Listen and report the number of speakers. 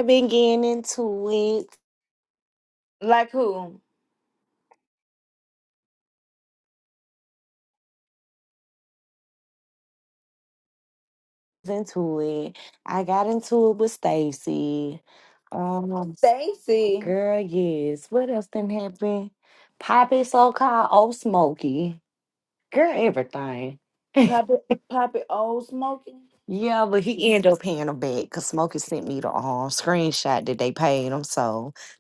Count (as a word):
two